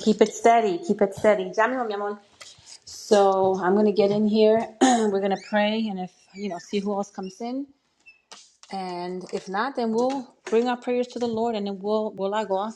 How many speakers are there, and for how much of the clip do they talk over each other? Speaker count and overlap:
one, no overlap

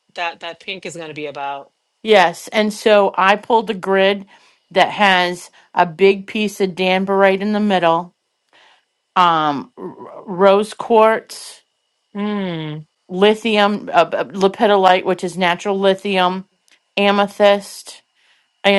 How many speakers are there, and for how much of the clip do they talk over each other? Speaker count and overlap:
two, no overlap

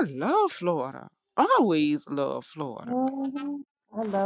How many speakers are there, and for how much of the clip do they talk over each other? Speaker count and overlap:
two, about 2%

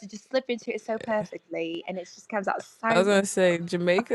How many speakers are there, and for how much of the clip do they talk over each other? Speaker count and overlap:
two, about 7%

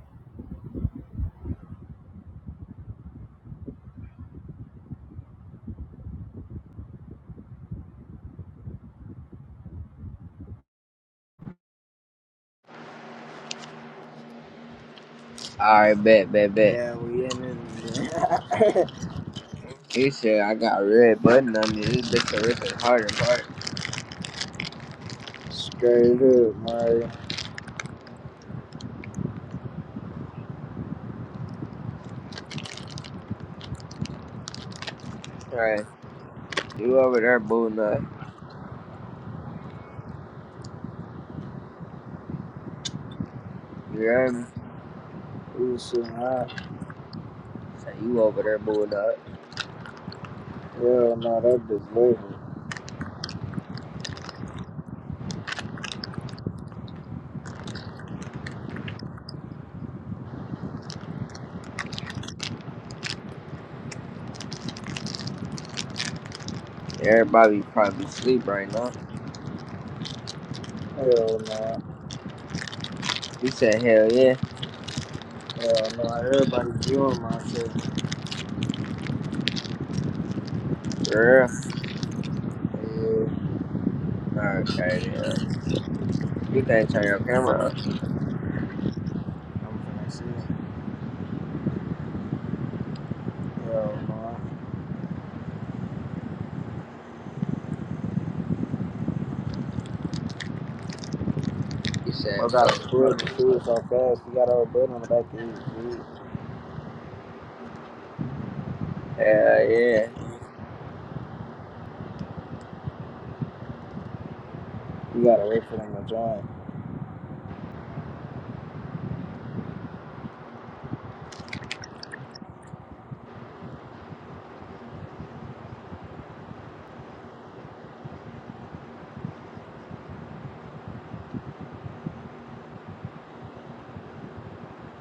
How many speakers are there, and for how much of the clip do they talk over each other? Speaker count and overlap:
two, about 1%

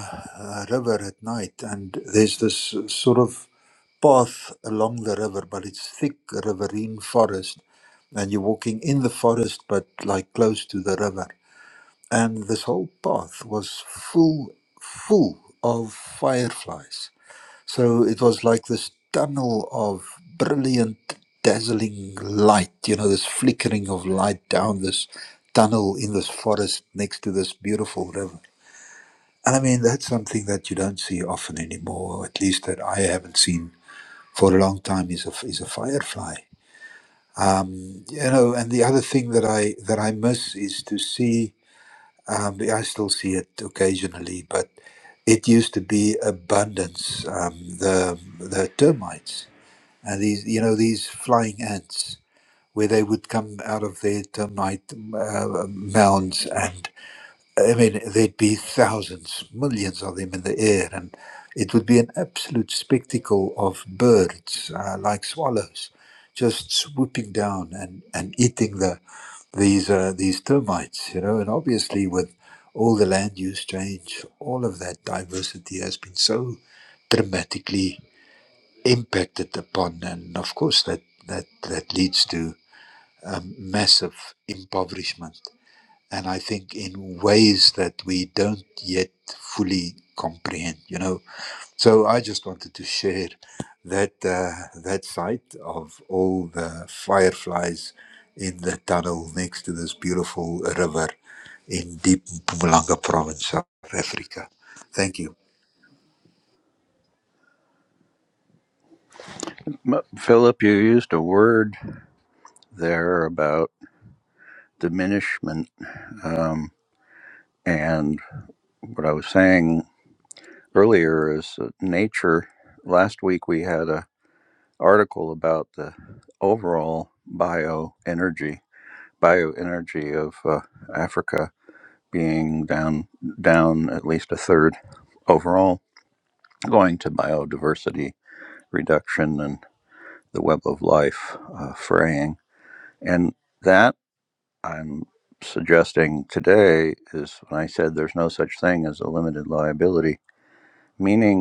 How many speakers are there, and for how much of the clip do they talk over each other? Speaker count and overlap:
two, no overlap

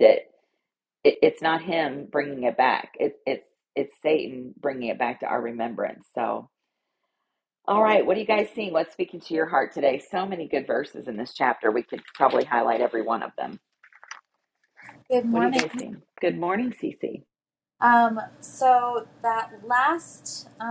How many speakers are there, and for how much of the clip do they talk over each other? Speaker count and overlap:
two, about 2%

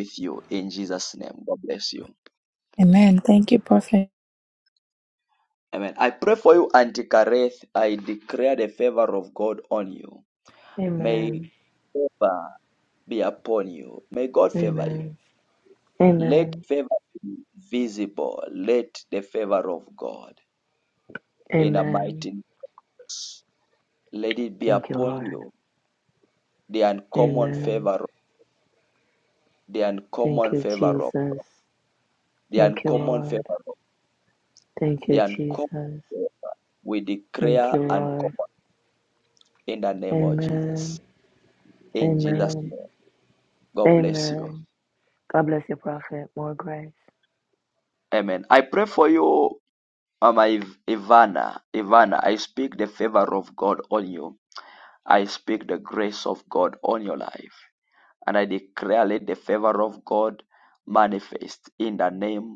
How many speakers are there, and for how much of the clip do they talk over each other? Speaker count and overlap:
three, about 14%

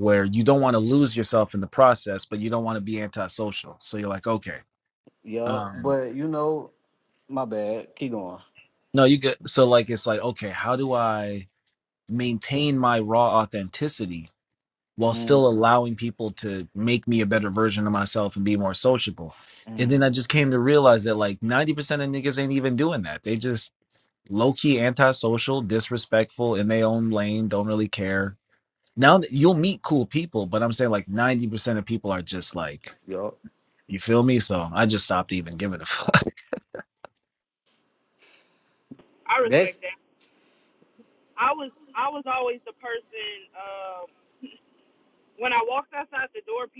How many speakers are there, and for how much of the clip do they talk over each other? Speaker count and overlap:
three, about 3%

